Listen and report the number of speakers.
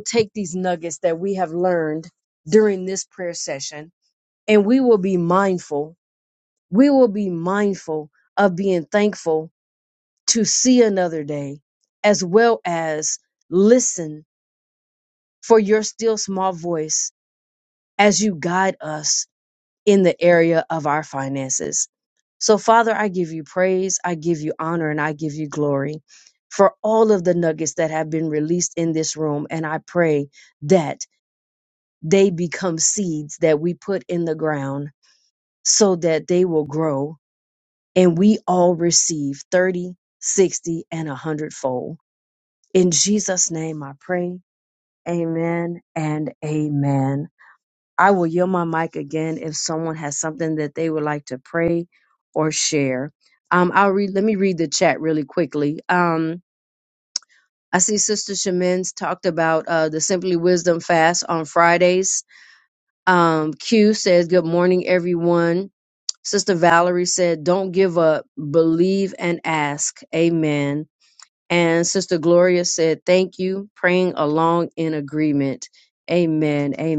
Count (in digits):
1